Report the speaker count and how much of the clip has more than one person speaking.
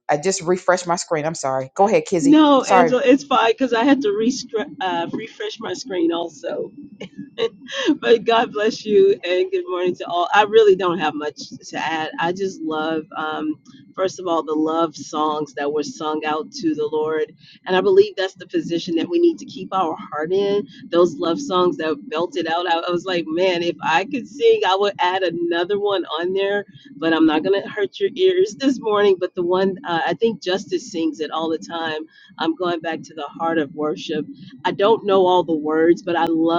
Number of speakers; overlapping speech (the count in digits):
2, about 1%